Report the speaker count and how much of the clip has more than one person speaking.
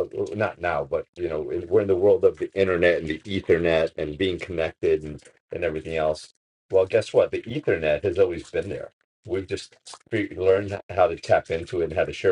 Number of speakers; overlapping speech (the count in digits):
1, no overlap